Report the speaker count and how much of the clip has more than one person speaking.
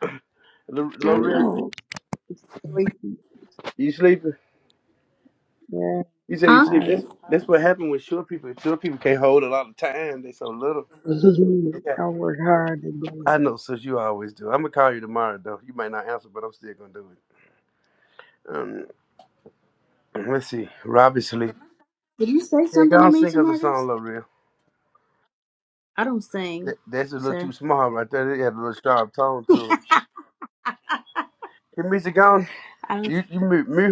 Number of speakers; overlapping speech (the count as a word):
three, about 9%